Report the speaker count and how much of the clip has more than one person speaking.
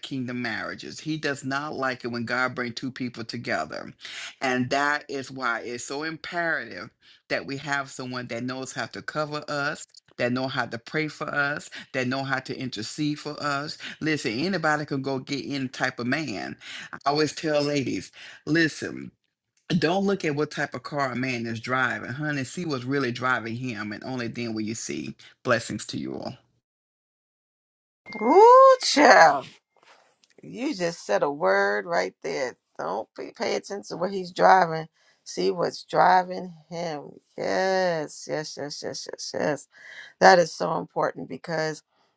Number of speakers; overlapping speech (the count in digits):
2, no overlap